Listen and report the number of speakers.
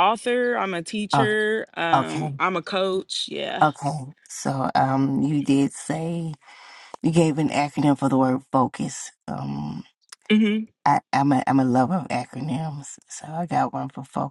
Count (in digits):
2